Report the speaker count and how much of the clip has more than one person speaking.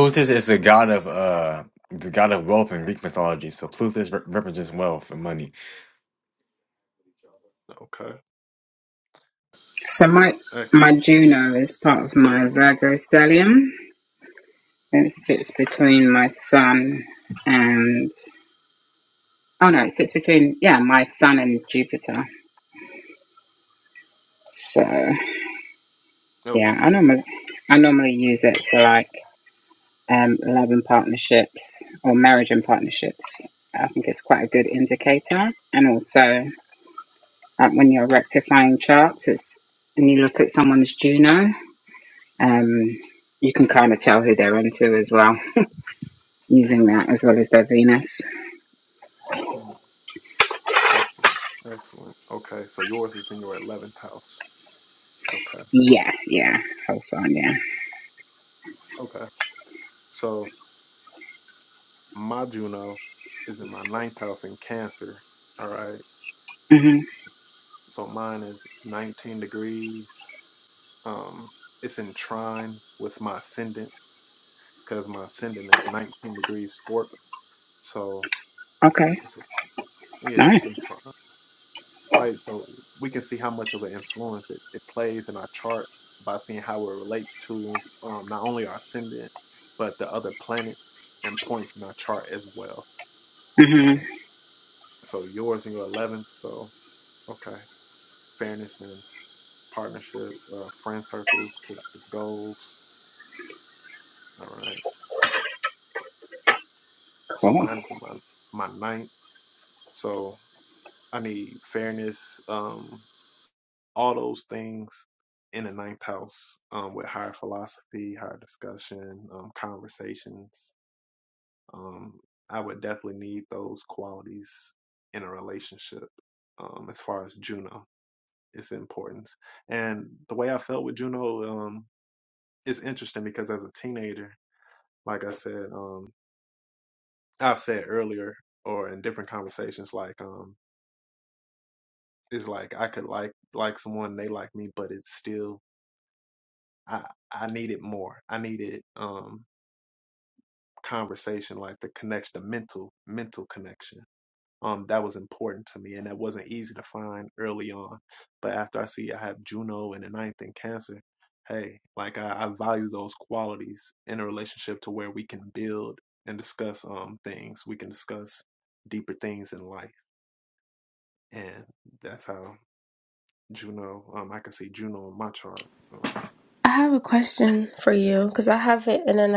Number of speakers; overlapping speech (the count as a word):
four, about 1%